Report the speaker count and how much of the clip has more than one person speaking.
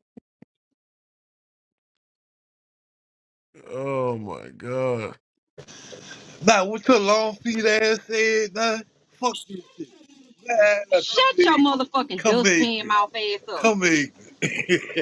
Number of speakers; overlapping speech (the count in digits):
3, about 11%